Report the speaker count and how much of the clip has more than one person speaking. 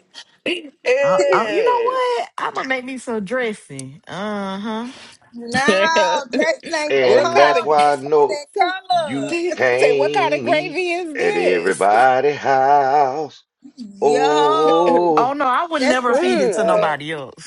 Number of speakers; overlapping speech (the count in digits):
4, about 38%